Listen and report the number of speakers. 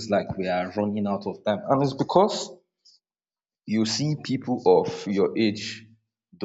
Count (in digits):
1